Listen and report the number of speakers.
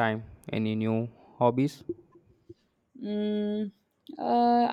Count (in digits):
2